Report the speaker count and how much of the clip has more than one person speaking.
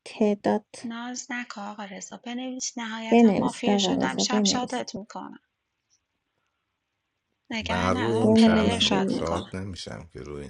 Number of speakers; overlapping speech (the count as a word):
three, about 33%